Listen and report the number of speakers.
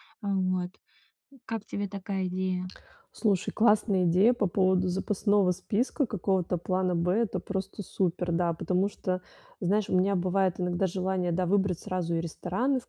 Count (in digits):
2